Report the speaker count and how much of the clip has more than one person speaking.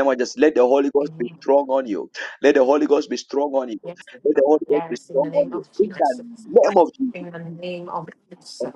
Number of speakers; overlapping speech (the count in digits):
2, about 31%